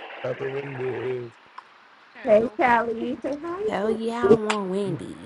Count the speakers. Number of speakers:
3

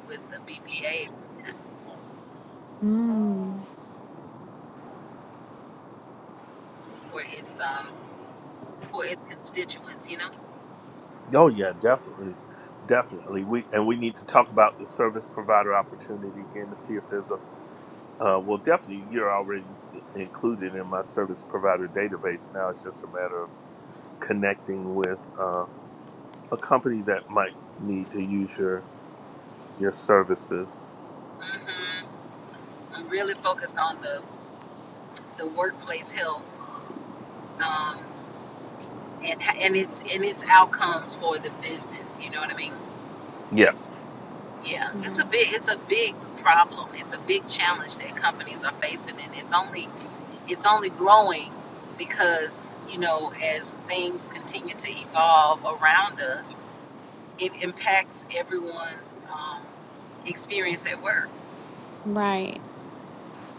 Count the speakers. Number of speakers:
3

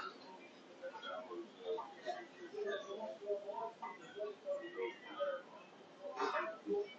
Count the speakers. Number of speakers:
0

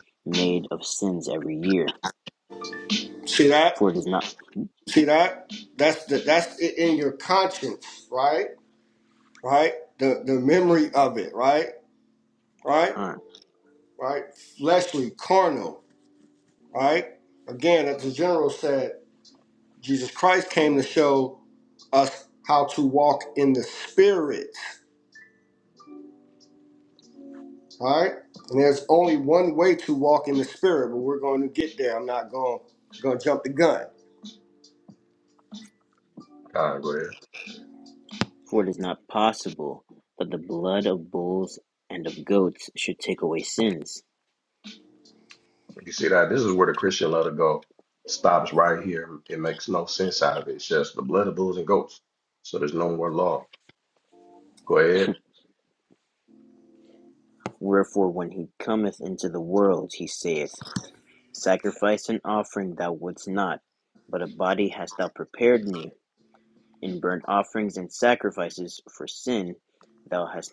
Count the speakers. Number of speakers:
3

